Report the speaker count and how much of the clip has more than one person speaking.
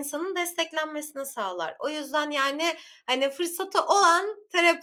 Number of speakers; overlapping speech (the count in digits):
1, no overlap